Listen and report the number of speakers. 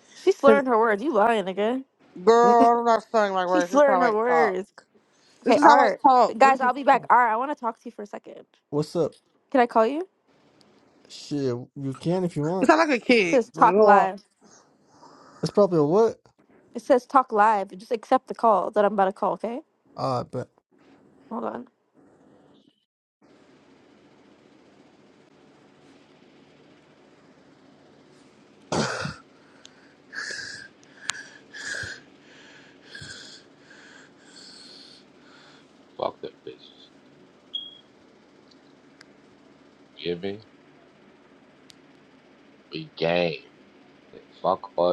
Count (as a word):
four